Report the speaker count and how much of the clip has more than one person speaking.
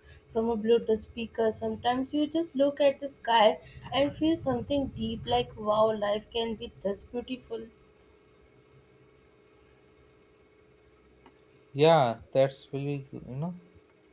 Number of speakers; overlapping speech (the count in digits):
2, no overlap